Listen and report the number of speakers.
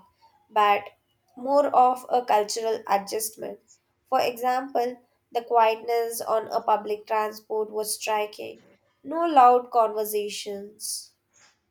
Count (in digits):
1